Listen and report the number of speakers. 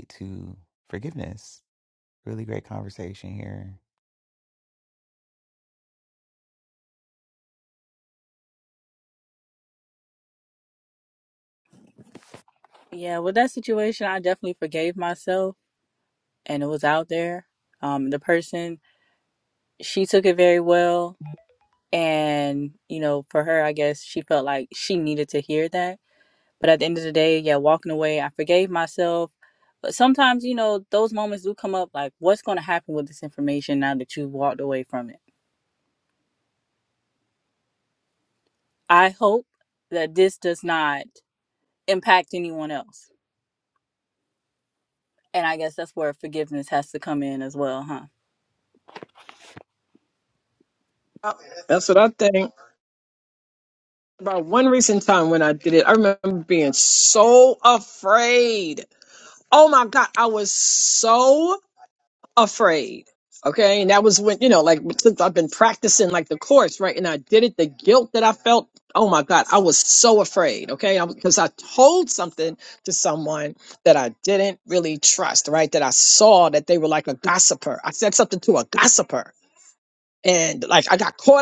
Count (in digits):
3